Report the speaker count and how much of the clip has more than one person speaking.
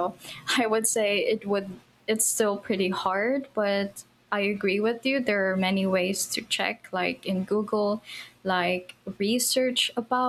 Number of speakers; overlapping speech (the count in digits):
1, no overlap